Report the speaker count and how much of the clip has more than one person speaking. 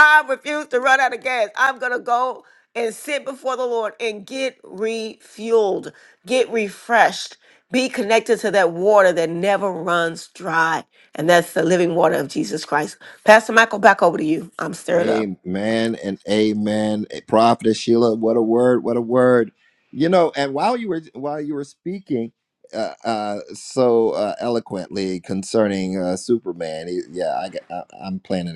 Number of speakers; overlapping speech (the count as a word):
two, about 1%